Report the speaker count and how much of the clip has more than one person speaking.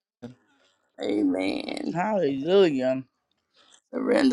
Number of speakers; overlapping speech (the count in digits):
2, no overlap